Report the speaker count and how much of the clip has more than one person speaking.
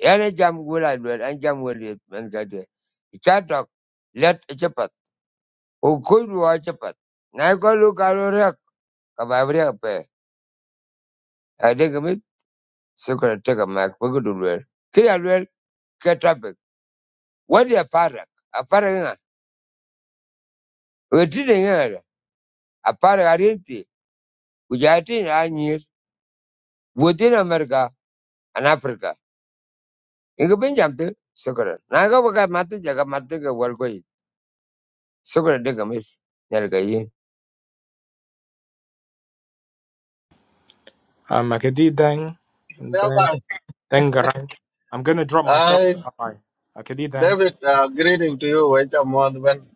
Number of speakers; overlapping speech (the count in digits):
3, about 2%